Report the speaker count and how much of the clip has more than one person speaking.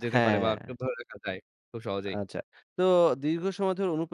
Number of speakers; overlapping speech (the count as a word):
two, about 15%